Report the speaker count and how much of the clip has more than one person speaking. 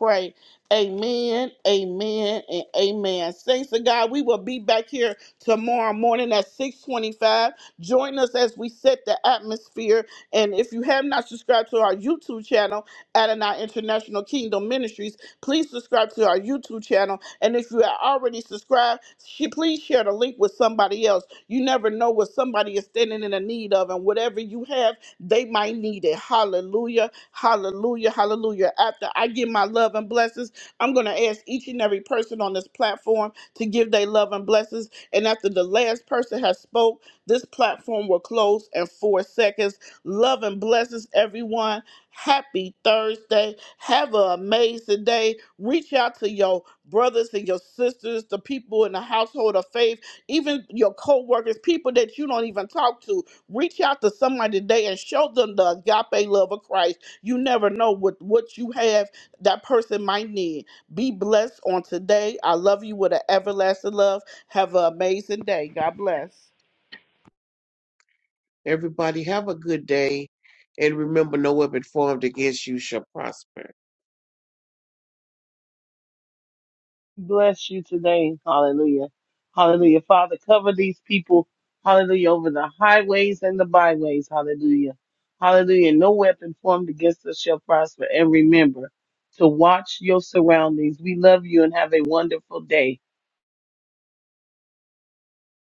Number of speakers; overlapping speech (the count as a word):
three, no overlap